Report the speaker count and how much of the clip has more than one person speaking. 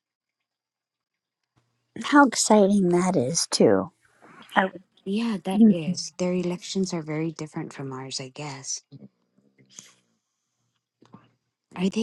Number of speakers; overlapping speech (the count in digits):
2, about 2%